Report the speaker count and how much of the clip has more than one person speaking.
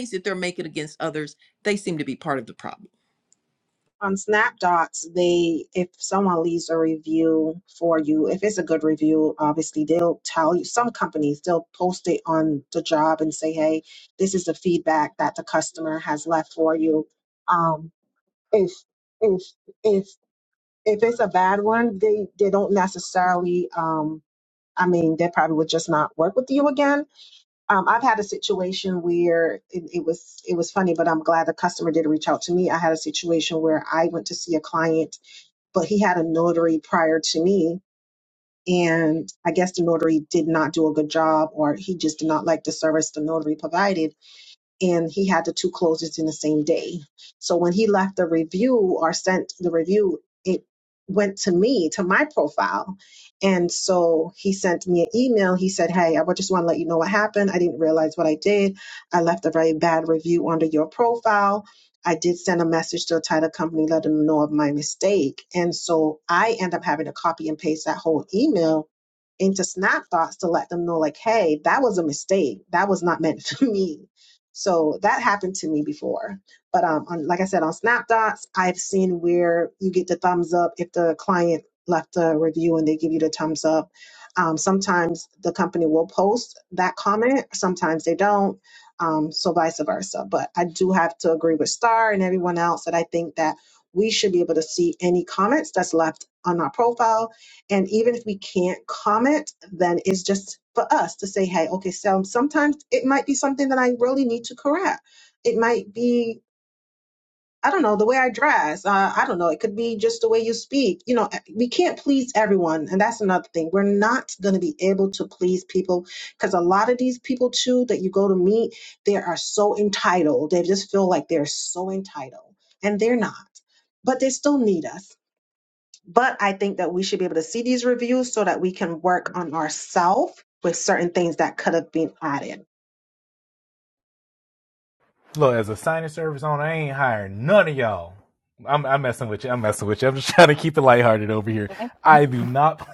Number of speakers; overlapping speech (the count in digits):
3, about 1%